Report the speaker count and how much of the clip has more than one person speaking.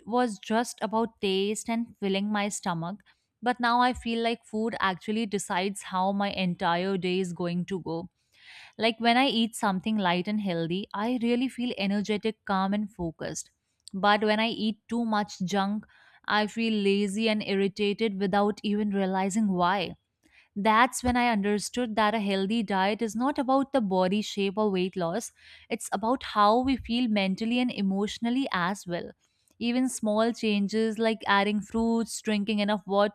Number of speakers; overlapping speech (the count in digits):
1, no overlap